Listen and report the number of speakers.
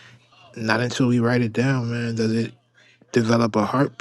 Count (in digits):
1